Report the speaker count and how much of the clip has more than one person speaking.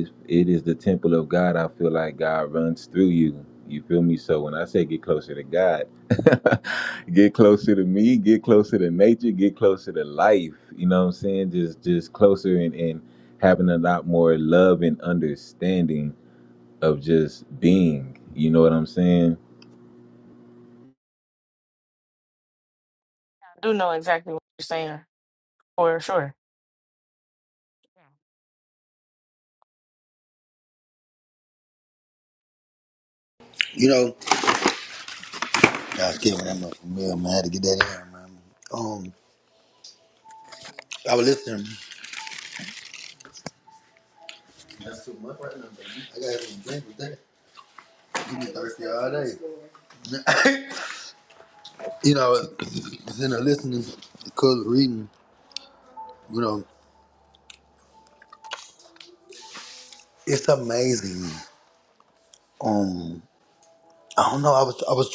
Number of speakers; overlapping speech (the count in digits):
3, no overlap